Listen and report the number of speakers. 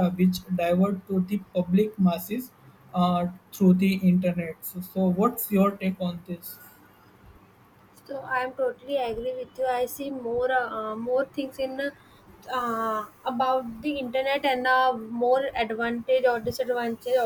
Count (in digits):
2